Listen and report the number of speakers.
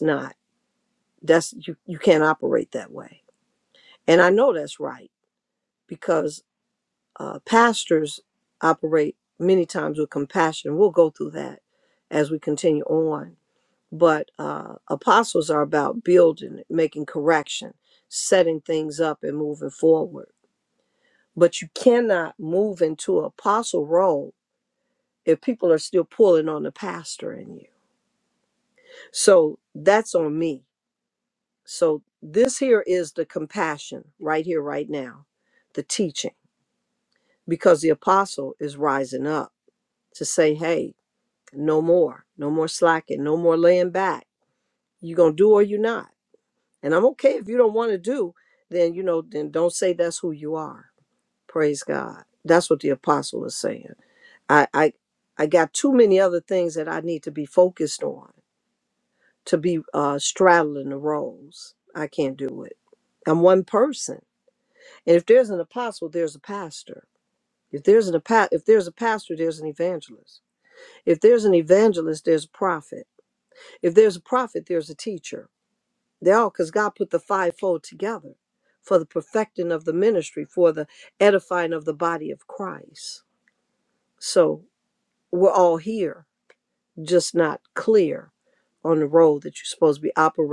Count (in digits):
1